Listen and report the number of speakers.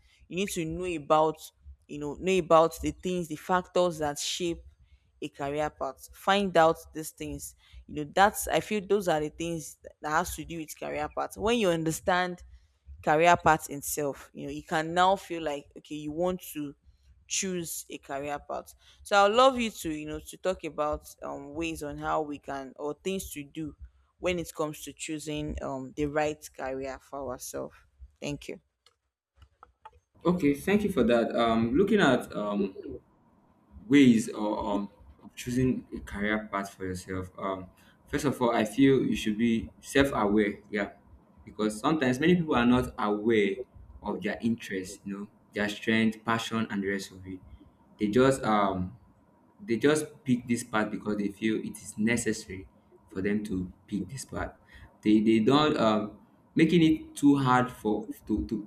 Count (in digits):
2